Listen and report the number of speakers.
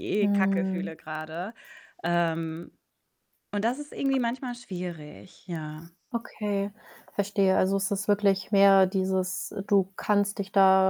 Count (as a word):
two